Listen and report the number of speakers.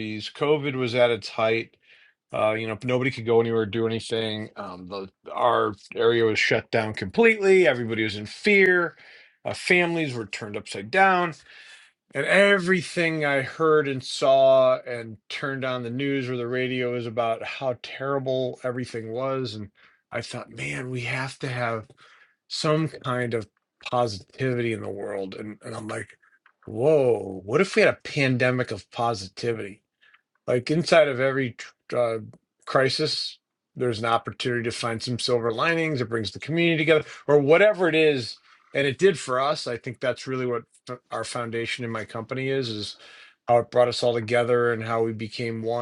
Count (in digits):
1